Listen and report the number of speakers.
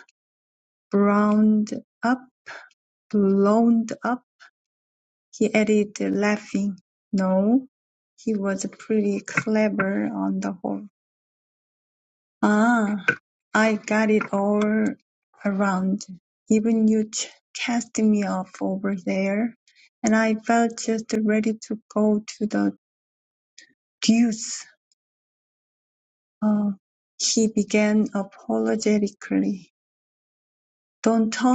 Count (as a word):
one